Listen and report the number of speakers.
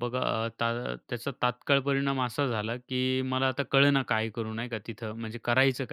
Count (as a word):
one